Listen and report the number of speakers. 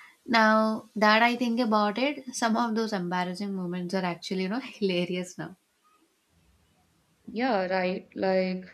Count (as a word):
two